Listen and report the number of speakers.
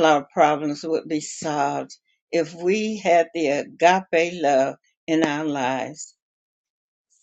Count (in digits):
1